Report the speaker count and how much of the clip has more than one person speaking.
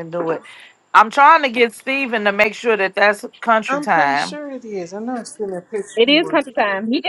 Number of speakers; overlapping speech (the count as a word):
three, about 14%